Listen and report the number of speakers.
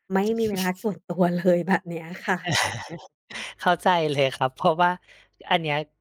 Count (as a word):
two